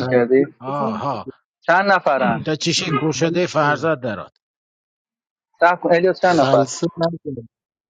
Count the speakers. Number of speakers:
3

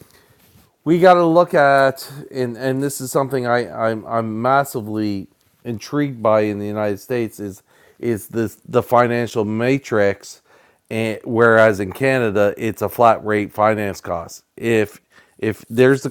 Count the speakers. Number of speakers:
1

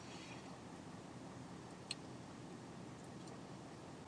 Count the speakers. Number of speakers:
0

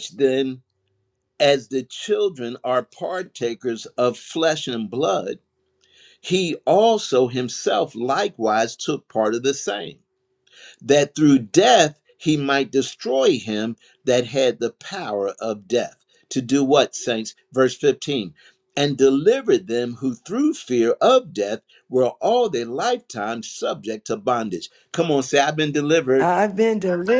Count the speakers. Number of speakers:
2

